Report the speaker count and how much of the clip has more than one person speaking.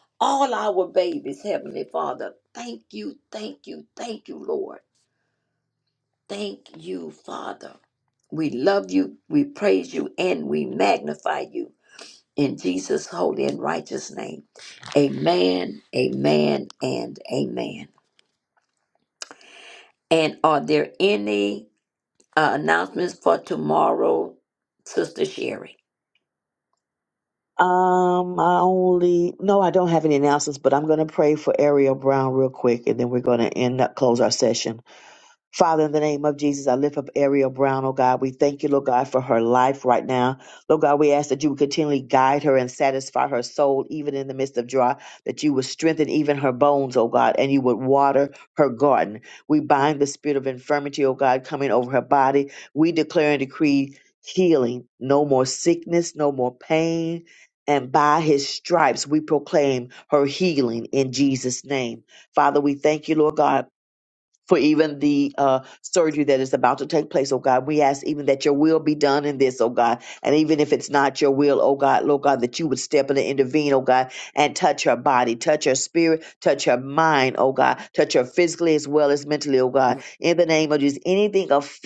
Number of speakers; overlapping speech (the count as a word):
two, no overlap